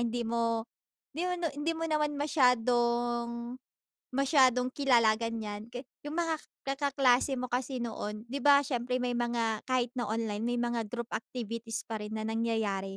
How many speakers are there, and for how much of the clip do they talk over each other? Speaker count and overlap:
one, no overlap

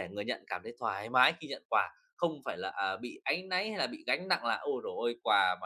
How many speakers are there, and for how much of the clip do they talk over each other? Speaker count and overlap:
one, no overlap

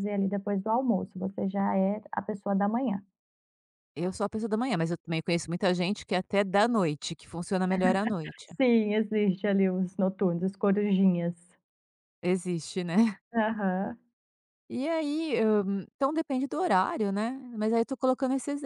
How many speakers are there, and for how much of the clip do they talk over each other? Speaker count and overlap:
two, no overlap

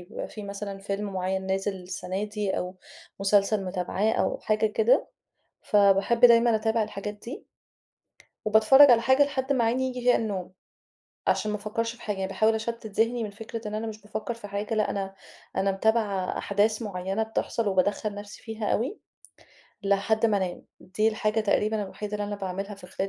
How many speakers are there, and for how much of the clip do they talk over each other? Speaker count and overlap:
one, no overlap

